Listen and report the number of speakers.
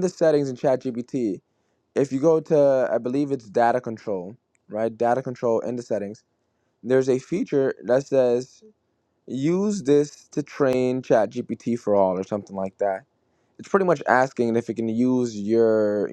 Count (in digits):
1